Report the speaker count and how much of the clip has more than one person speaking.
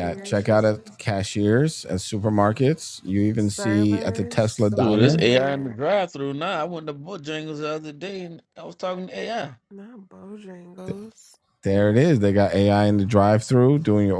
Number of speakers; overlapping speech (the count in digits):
3, about 17%